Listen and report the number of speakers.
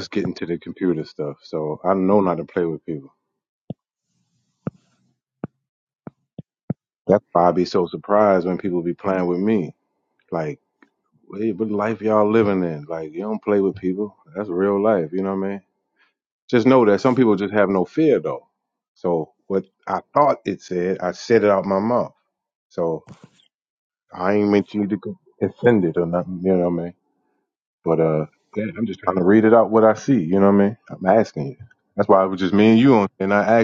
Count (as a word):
one